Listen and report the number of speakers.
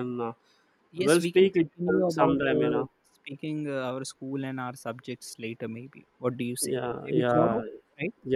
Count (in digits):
2